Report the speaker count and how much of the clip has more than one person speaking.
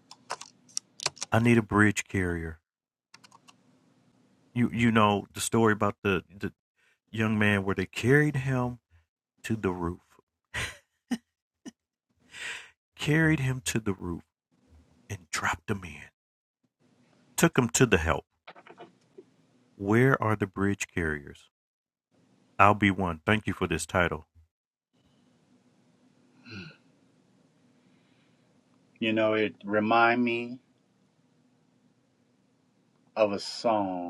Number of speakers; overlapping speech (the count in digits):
2, no overlap